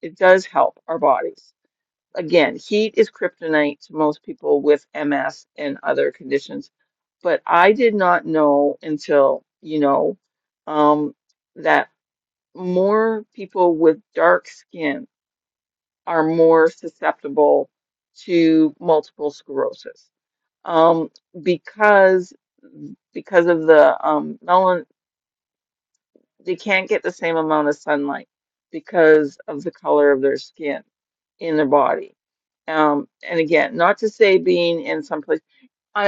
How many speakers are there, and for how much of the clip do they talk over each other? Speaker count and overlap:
1, no overlap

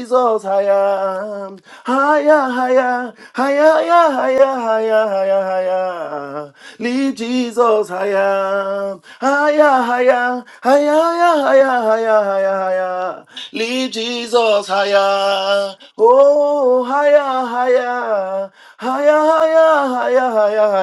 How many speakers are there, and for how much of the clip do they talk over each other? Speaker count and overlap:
1, no overlap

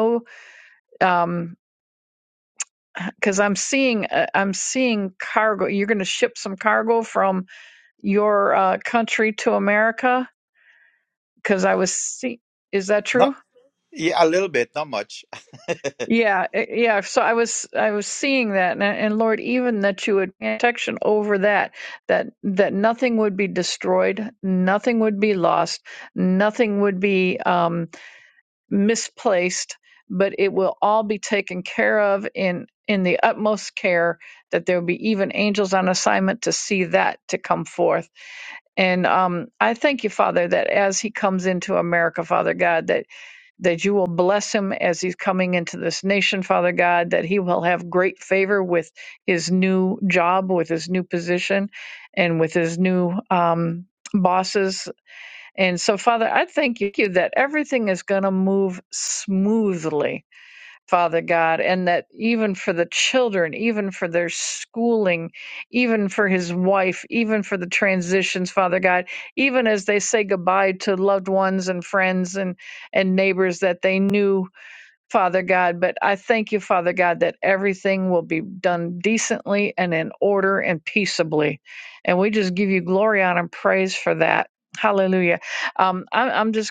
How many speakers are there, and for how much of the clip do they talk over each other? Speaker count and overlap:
2, under 1%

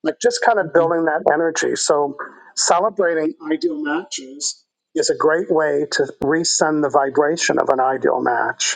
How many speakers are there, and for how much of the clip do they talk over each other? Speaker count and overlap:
1, no overlap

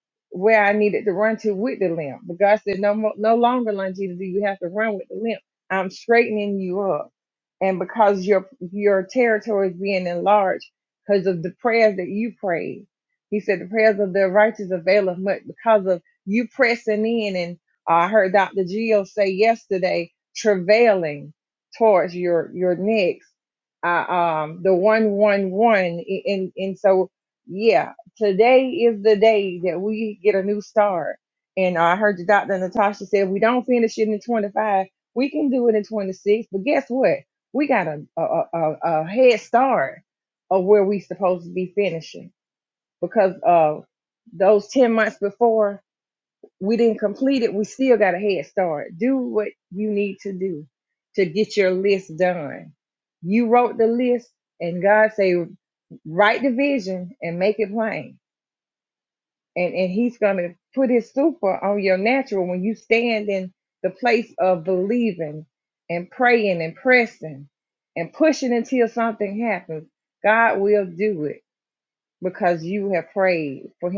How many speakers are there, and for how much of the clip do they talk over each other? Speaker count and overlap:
1, no overlap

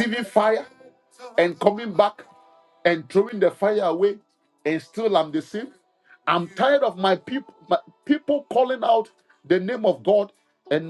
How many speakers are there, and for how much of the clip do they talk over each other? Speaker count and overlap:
1, no overlap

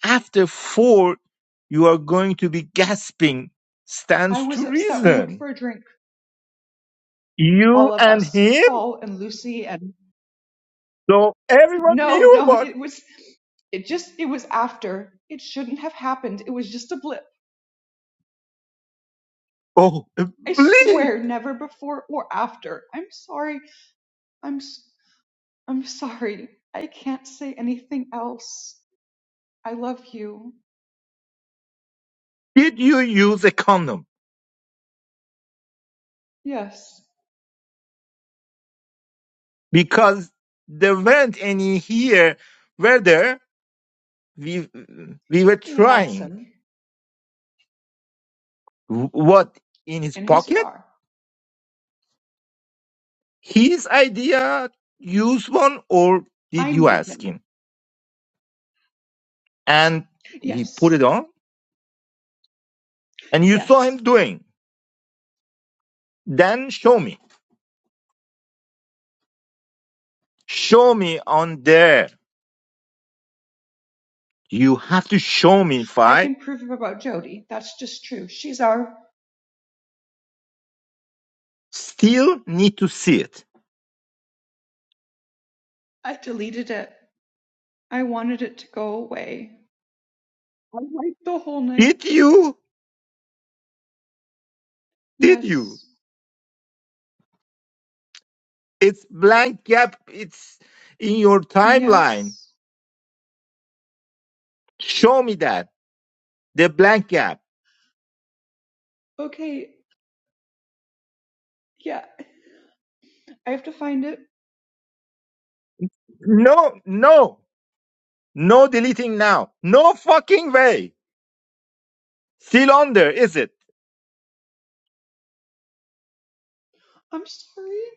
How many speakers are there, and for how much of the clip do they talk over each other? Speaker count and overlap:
2, about 6%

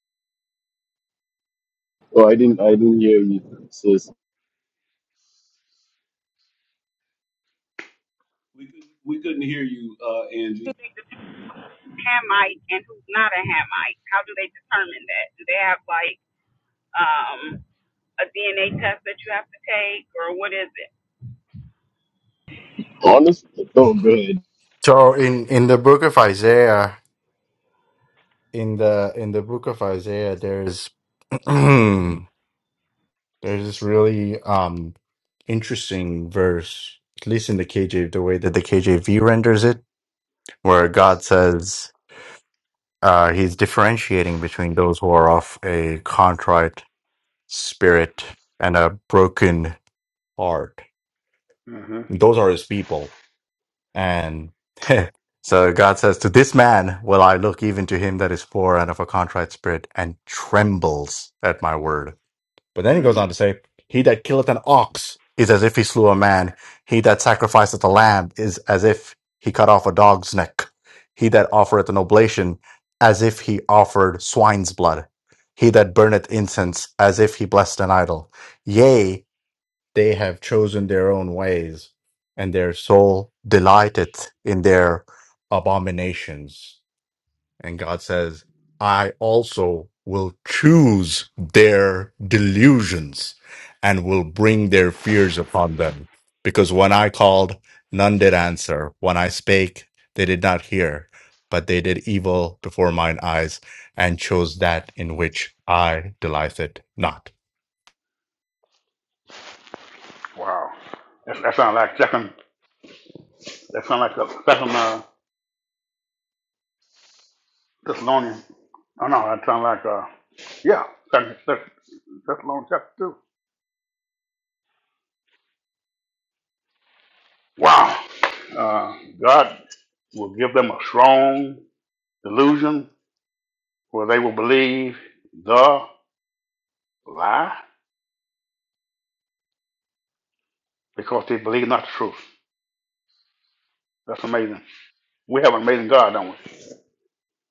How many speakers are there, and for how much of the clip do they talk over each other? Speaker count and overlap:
5, under 1%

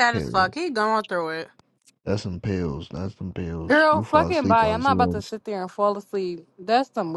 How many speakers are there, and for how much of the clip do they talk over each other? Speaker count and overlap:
3, about 30%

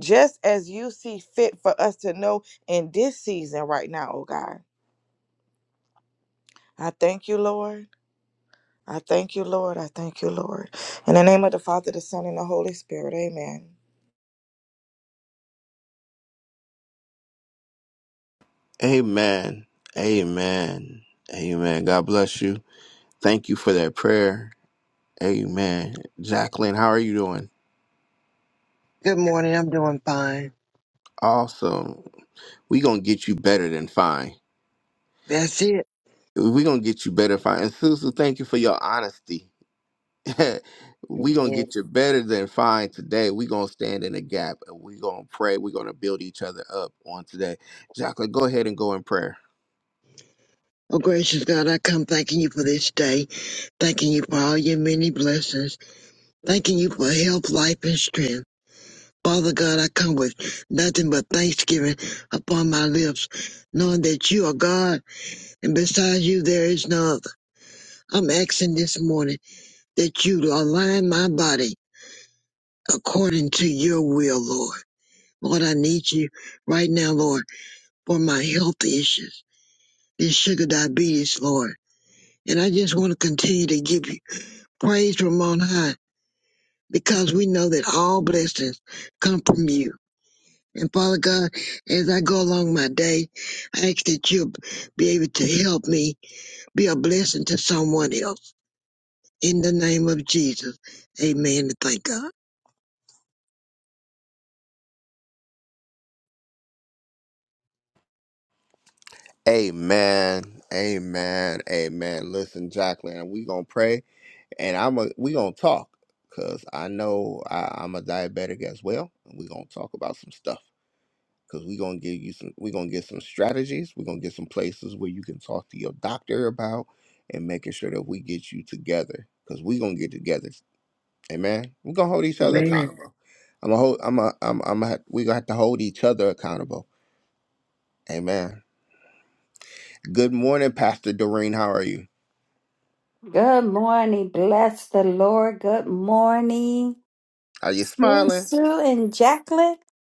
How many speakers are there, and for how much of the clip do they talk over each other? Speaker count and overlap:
4, about 1%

